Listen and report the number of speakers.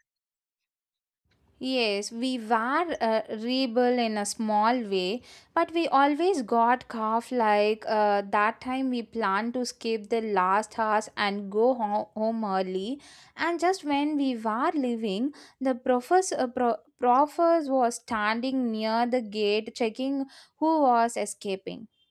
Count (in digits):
1